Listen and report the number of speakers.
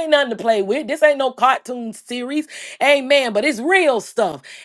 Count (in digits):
1